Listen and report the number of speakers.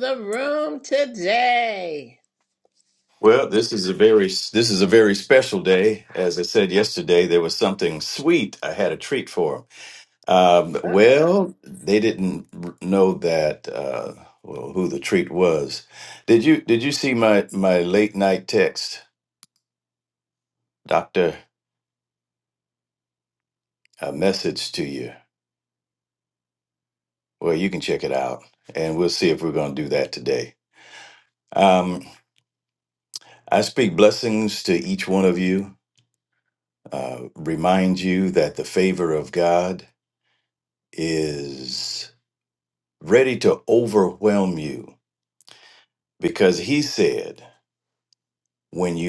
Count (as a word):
two